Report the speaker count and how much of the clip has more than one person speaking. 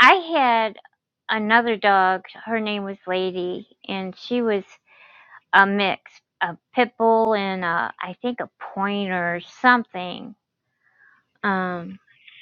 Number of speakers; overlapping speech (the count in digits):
1, no overlap